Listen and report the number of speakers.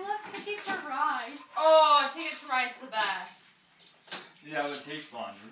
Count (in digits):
3